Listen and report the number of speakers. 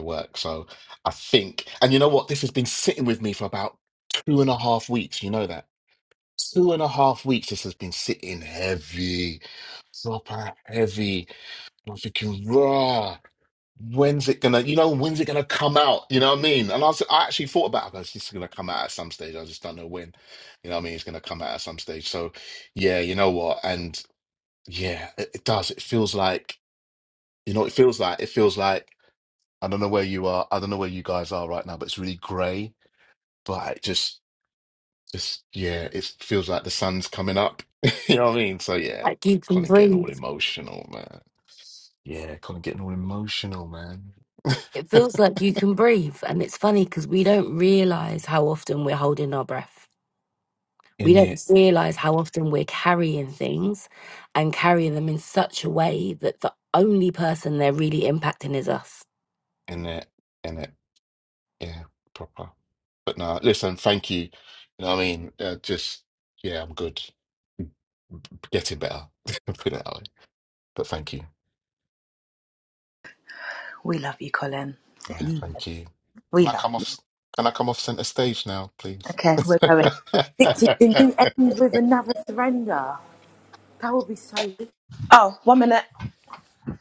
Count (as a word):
four